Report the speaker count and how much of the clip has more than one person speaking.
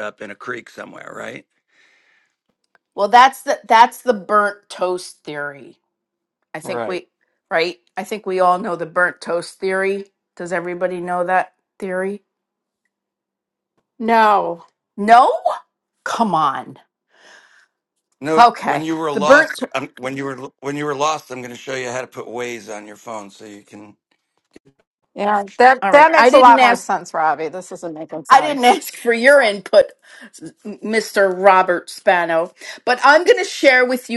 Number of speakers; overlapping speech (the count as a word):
three, about 8%